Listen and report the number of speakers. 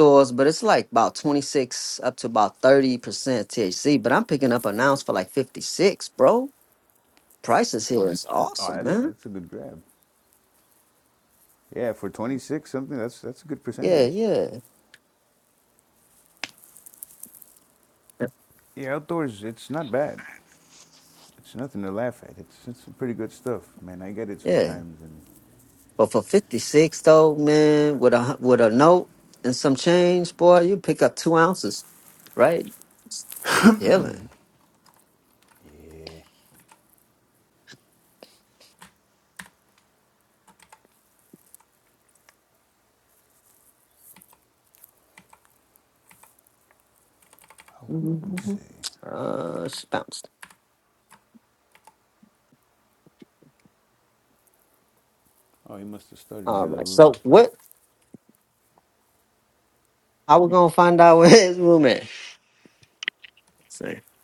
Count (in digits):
2